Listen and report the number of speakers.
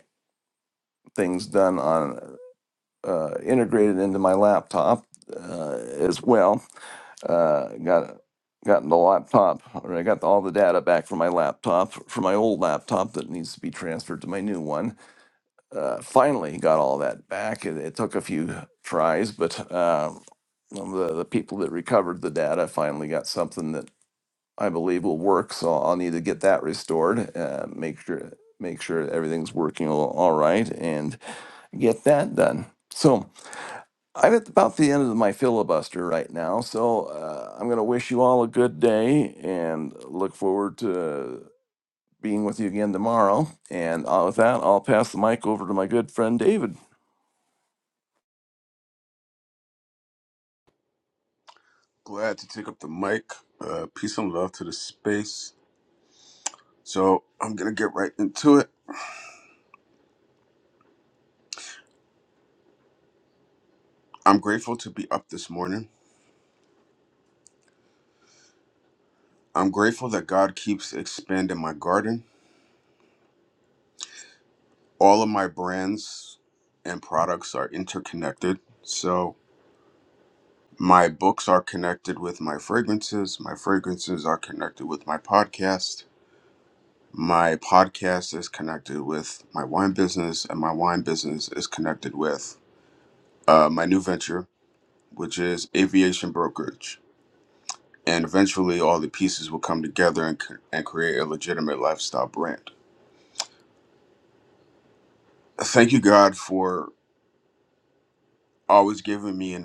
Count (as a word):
two